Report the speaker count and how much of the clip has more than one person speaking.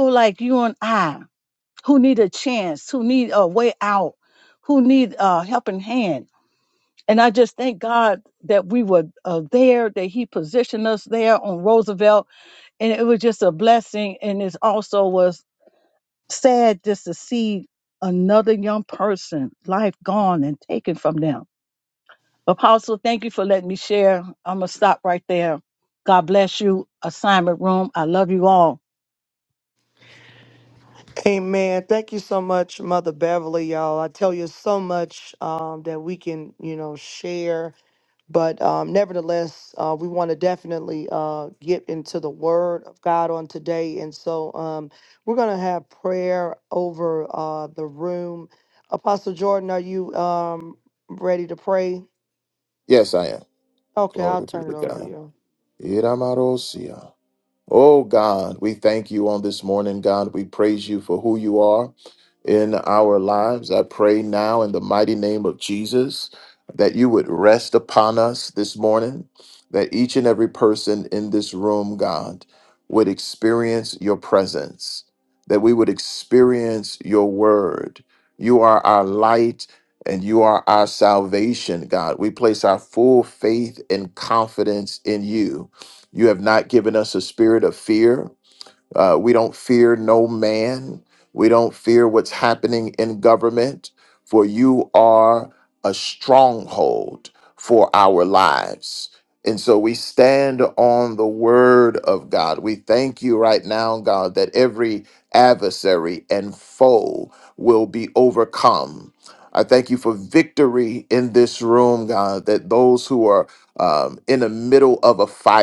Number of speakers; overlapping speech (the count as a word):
three, about 1%